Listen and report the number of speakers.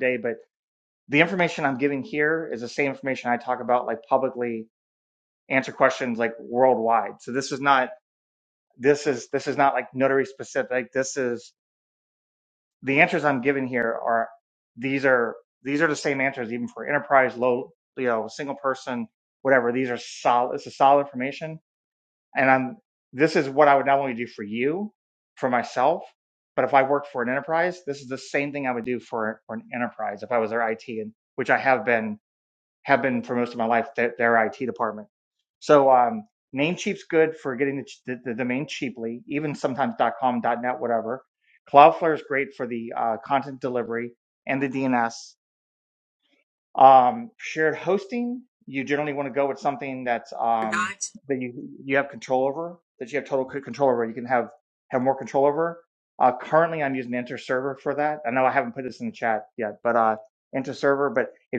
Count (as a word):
one